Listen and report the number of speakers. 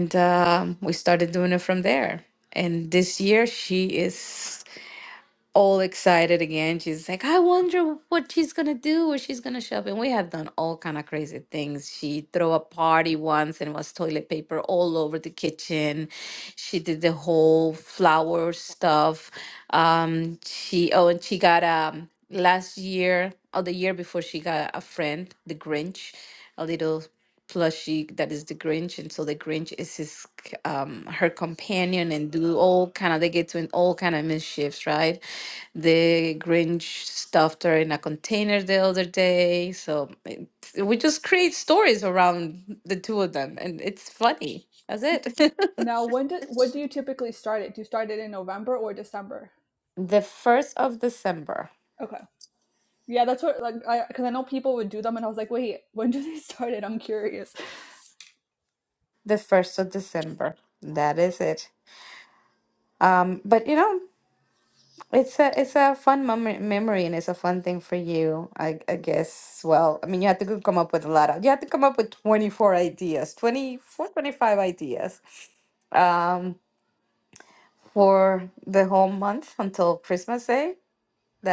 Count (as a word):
two